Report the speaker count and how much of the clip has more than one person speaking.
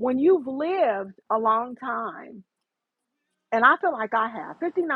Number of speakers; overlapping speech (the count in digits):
1, no overlap